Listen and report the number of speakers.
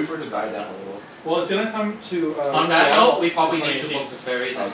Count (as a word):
three